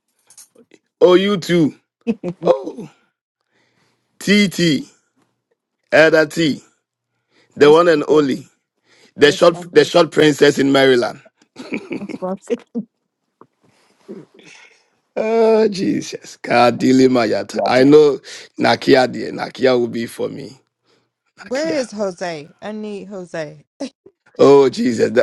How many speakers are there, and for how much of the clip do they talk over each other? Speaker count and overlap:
3, about 8%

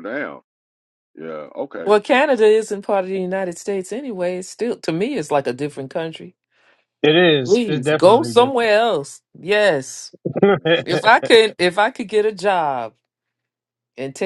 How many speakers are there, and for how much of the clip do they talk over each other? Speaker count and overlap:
3, about 9%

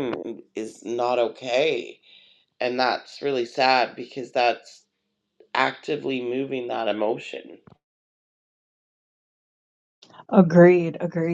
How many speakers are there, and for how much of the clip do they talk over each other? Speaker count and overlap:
2, no overlap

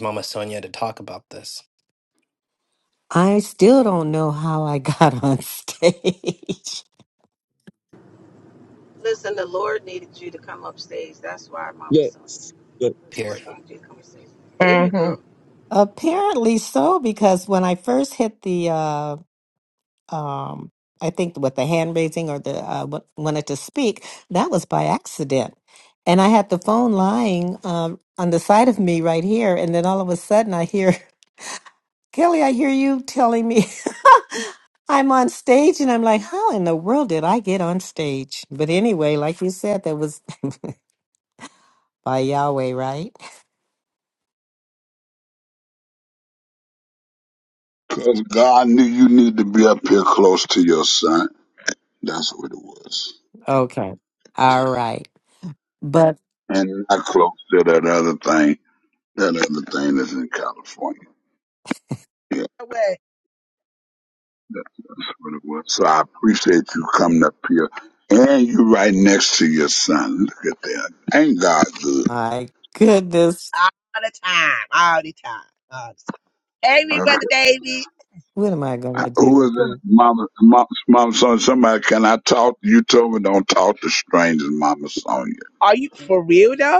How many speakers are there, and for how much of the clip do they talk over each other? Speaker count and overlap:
5, about 3%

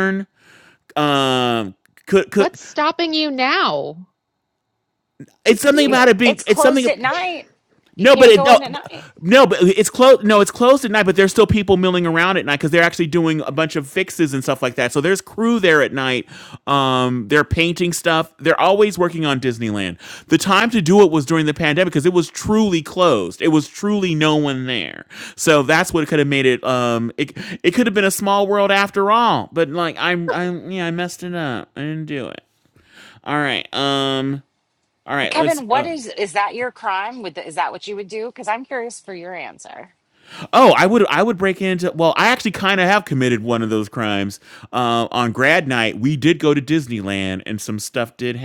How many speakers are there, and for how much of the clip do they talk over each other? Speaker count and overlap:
3, about 6%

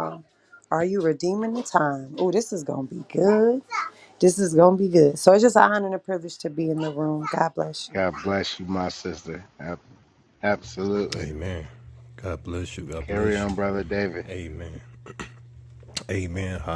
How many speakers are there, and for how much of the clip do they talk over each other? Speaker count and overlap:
3, about 4%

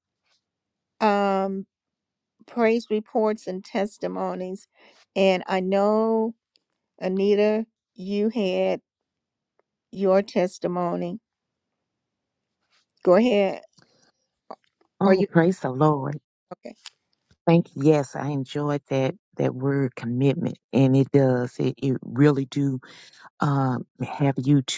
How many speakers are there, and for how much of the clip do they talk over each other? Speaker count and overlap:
2, about 1%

